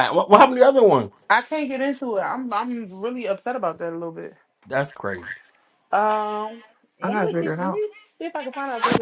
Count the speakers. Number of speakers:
3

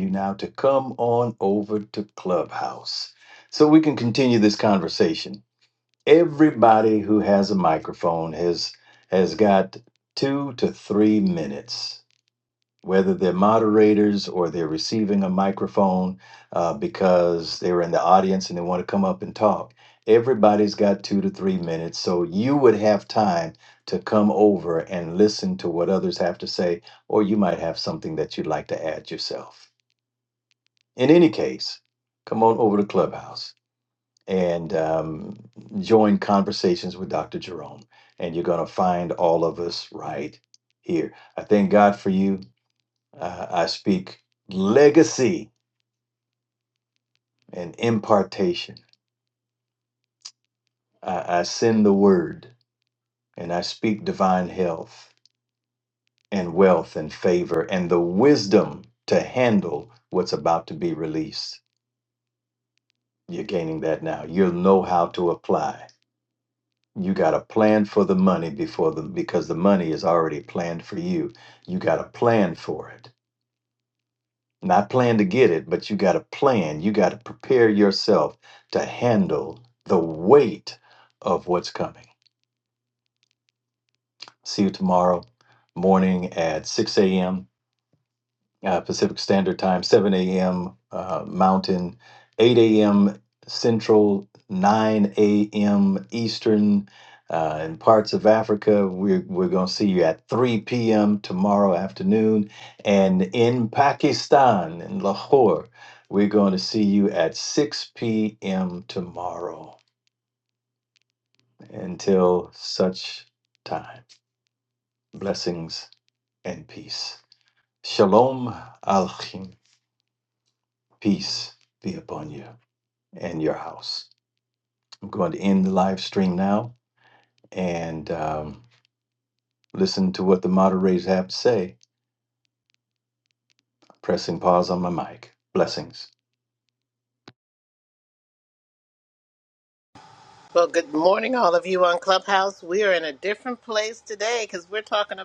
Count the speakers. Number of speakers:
2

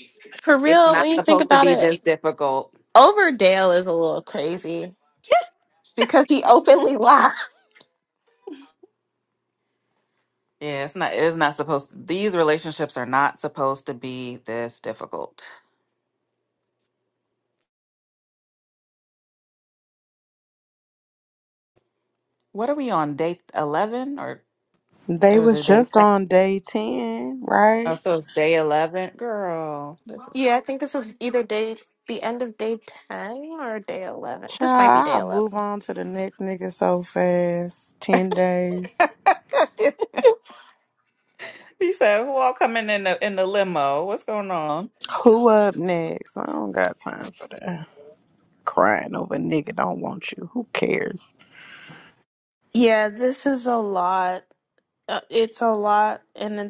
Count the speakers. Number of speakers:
4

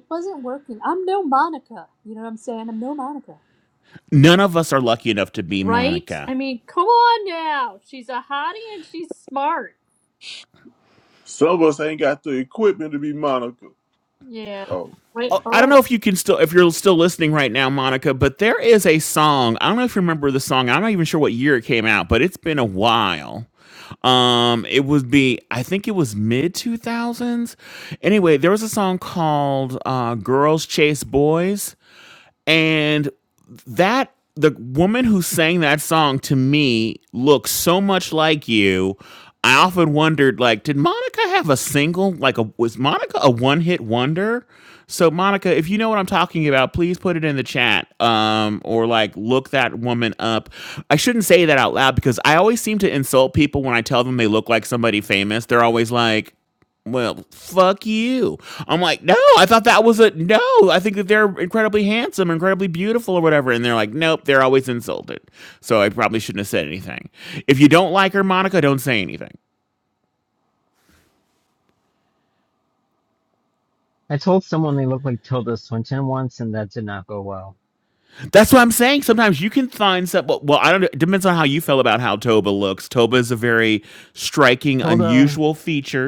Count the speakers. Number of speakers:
4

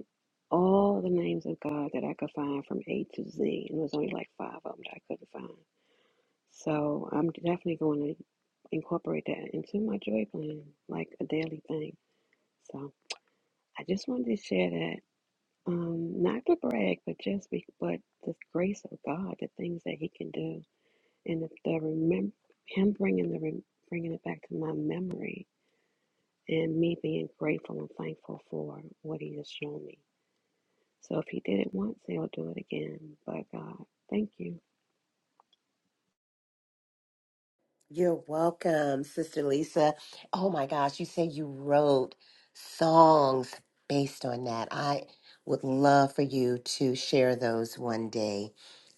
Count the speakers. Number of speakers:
2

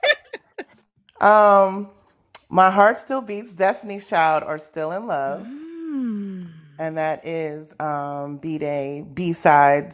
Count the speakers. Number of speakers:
2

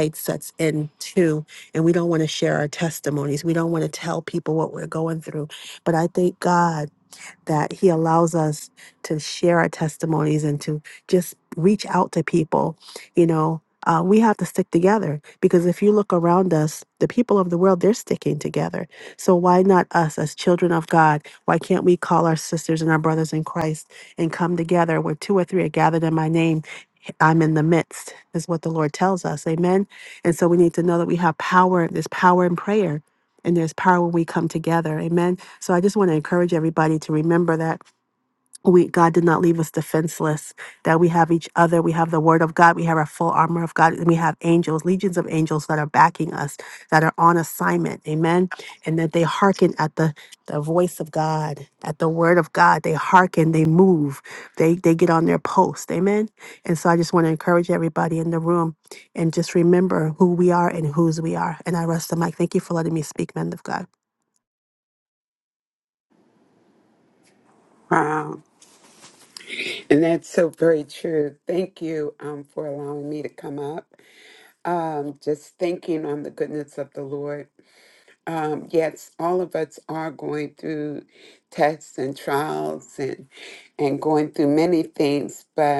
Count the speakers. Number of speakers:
2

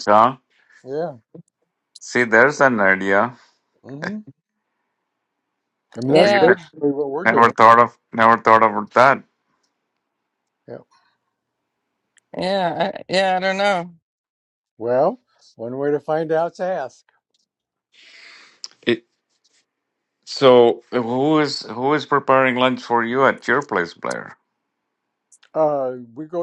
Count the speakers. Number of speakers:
3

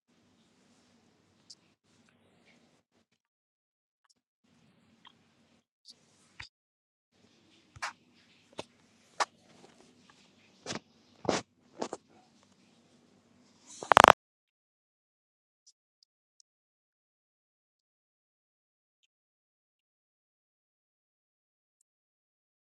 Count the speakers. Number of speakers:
0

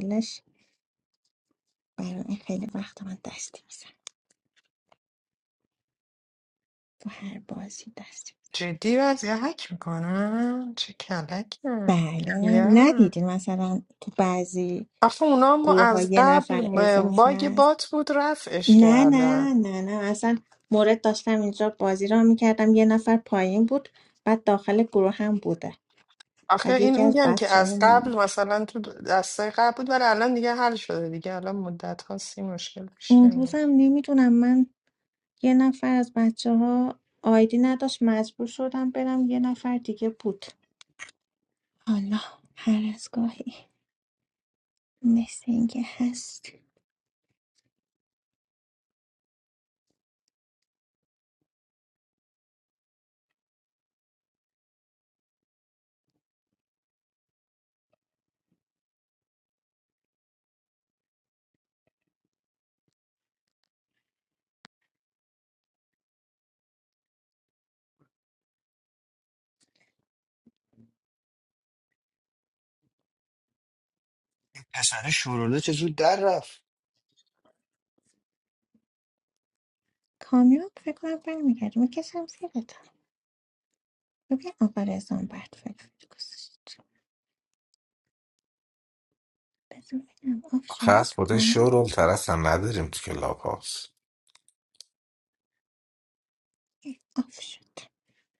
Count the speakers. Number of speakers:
4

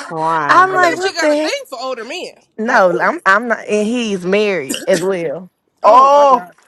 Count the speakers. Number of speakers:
3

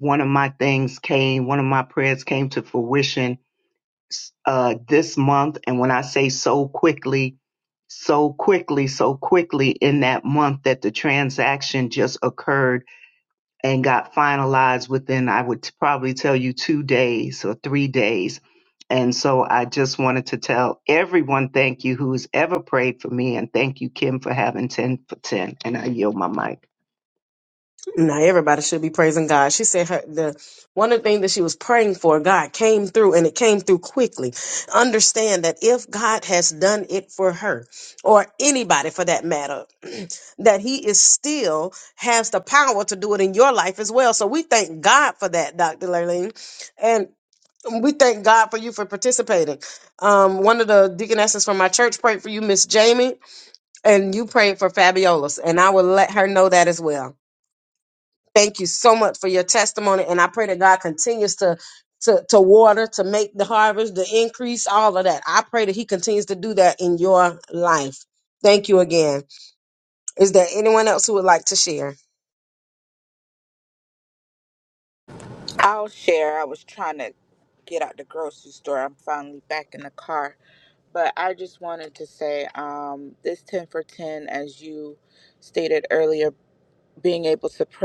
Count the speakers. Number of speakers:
3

